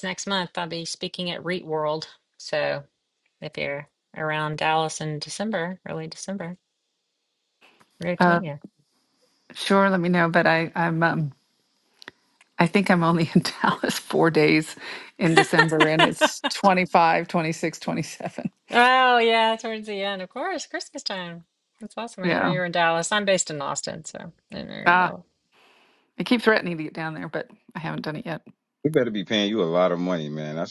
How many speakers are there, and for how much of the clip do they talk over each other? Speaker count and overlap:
3, about 3%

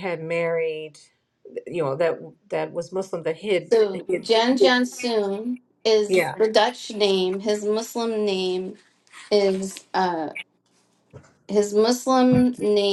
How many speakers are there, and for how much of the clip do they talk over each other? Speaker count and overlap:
2, about 7%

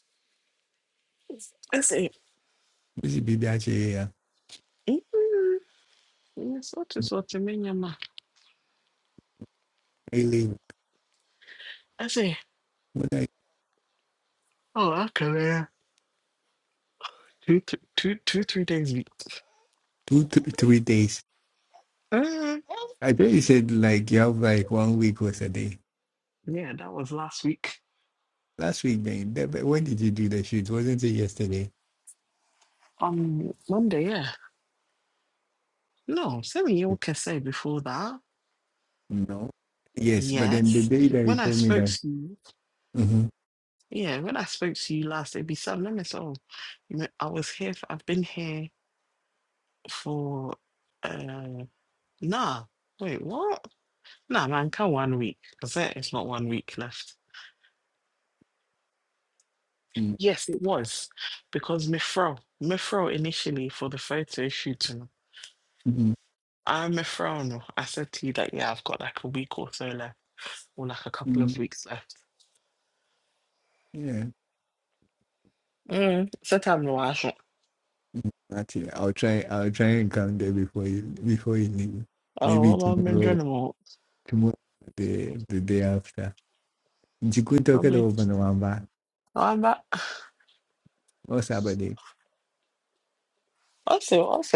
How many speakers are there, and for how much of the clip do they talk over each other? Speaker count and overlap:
2, about 3%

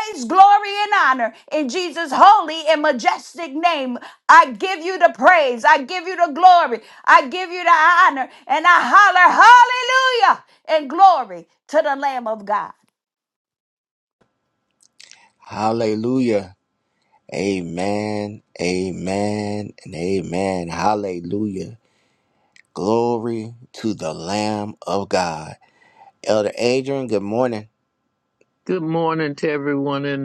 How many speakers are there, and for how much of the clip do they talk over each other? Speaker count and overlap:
3, no overlap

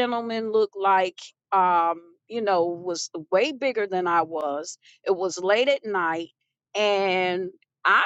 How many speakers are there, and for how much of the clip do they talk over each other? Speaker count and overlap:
1, no overlap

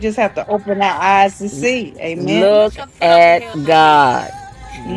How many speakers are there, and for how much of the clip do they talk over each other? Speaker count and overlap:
2, about 10%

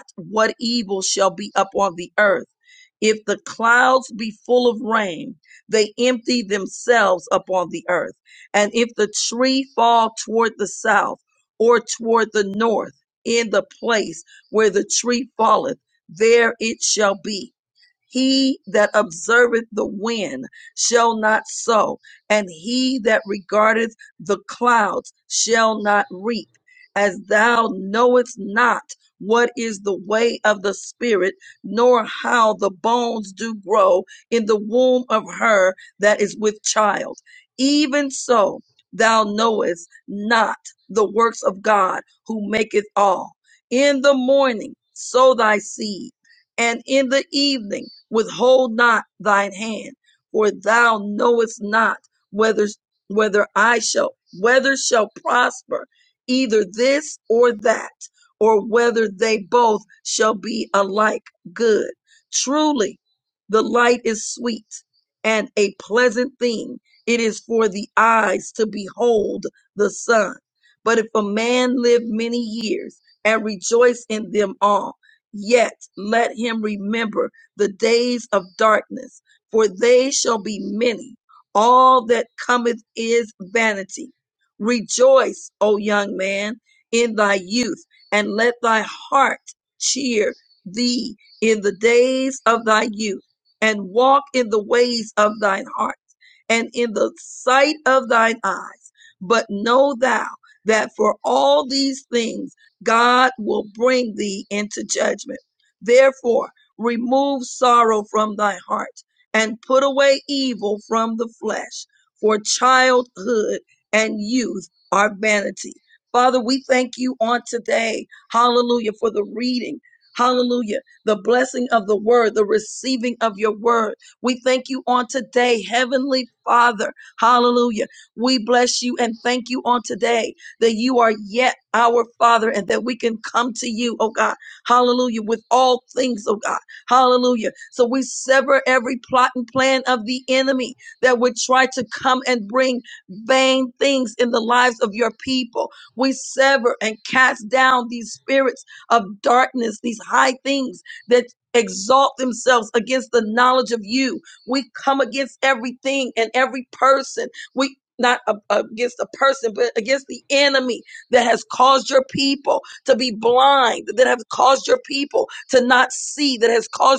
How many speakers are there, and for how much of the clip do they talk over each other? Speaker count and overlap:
1, no overlap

